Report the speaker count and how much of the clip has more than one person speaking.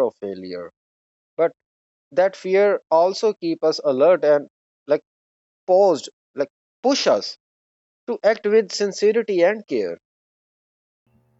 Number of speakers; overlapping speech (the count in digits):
1, no overlap